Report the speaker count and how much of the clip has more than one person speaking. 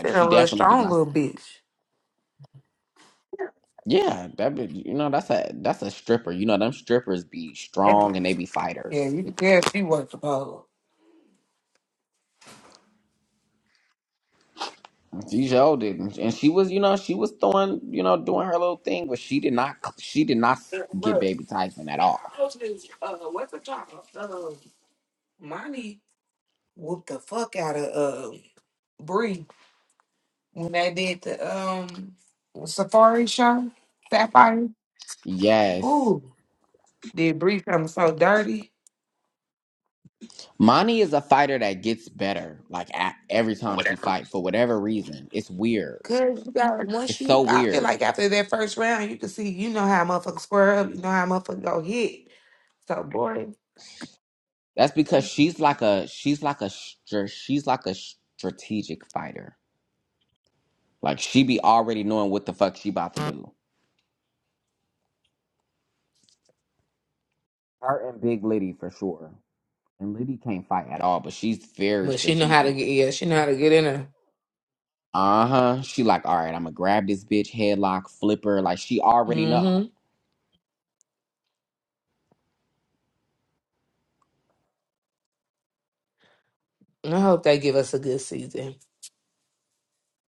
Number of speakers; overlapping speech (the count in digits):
2, about 5%